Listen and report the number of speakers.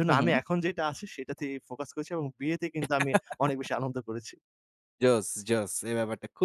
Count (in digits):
2